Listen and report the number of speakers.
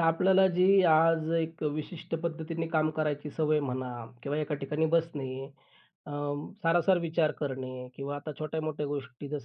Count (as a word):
one